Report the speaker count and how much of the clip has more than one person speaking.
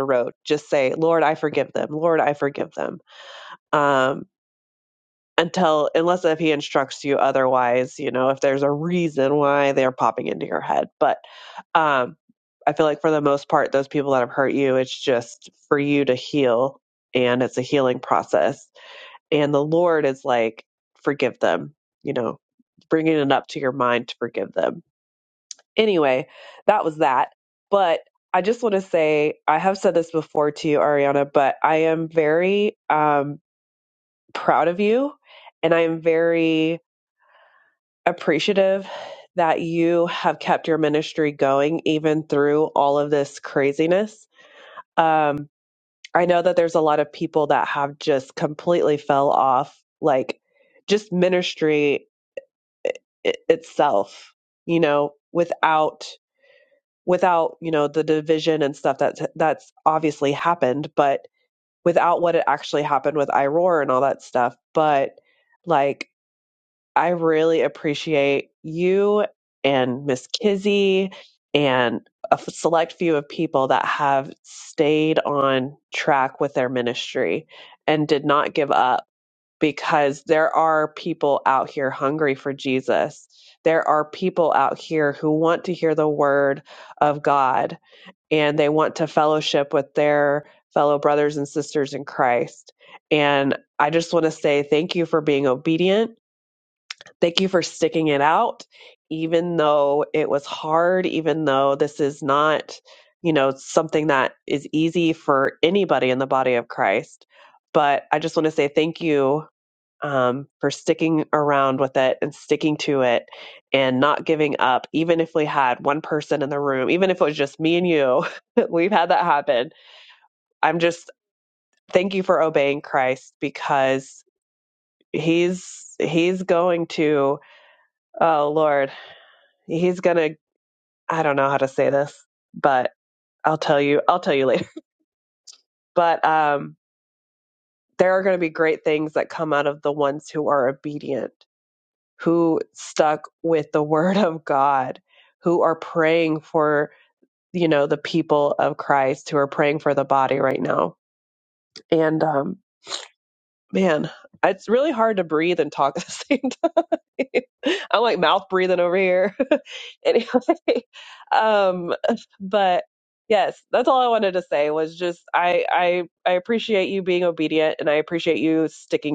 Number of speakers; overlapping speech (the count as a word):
one, no overlap